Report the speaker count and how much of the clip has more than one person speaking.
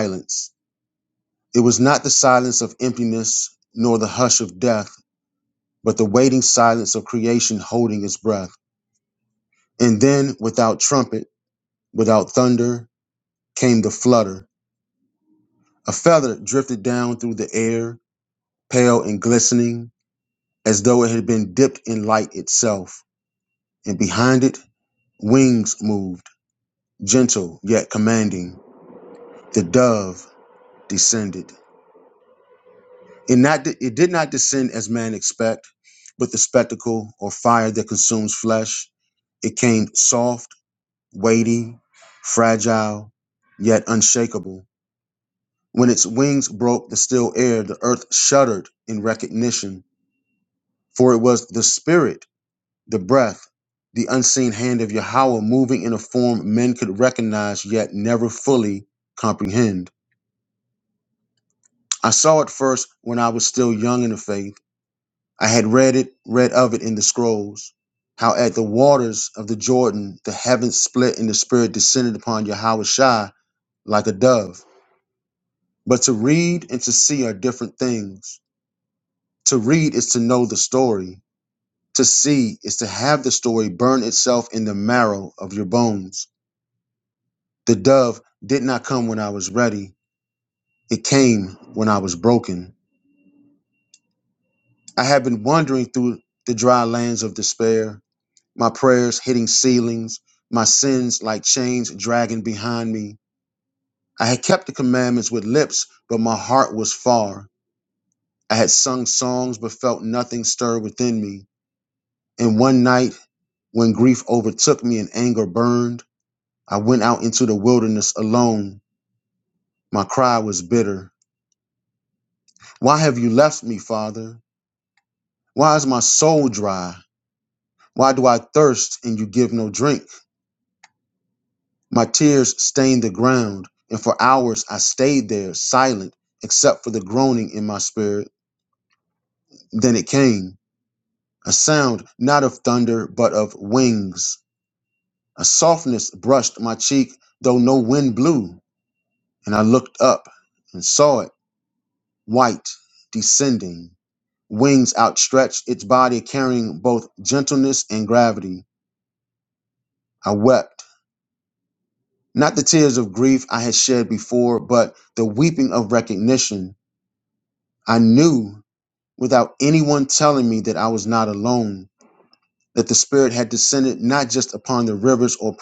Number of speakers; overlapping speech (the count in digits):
1, no overlap